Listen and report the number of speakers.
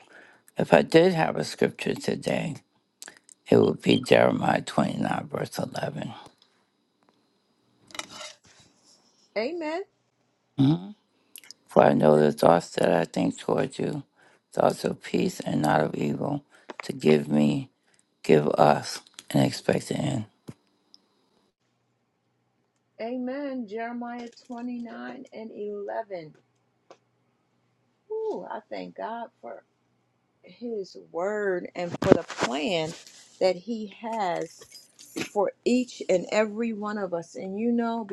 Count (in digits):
2